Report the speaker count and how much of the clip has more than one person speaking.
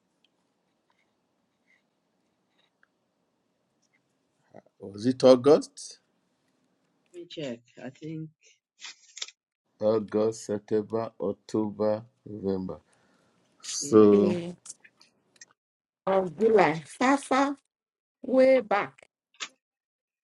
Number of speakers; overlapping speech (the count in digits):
3, about 2%